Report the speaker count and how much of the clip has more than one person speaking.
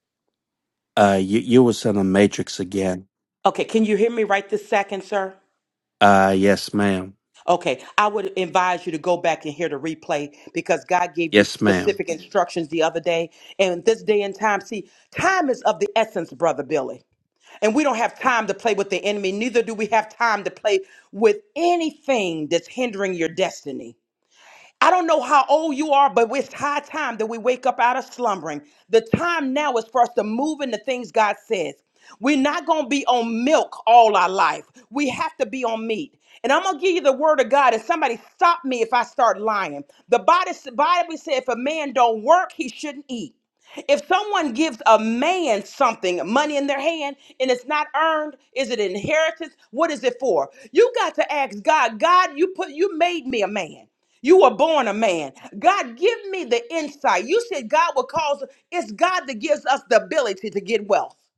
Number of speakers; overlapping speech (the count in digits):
2, about 1%